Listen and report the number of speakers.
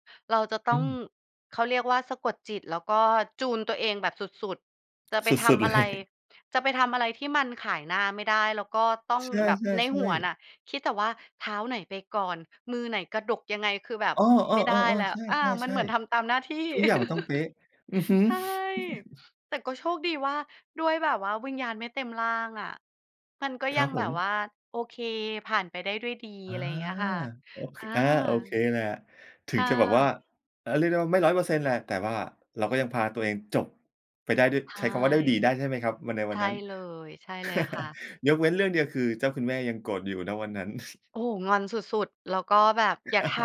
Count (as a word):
two